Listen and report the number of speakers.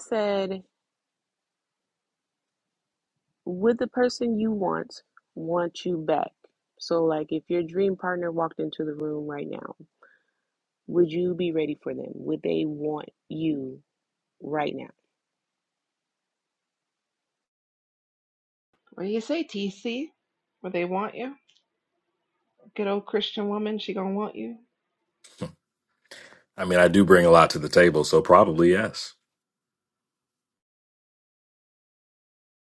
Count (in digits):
3